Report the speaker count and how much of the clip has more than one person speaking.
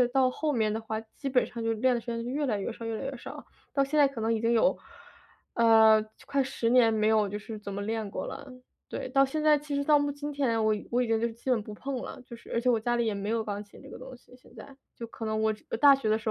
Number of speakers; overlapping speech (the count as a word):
one, no overlap